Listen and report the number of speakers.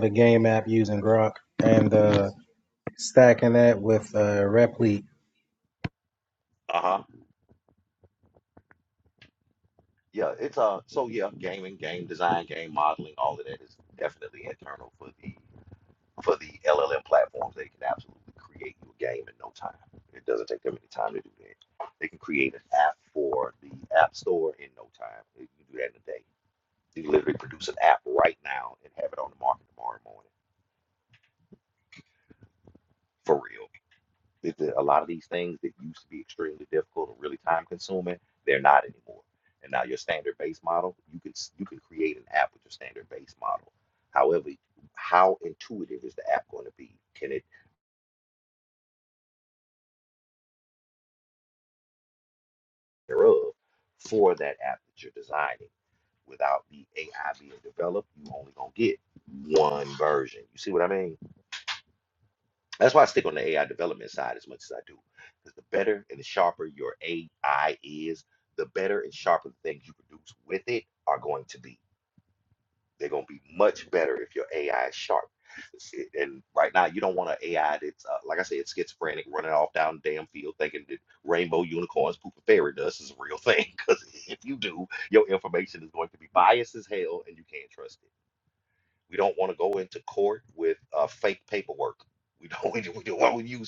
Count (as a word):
two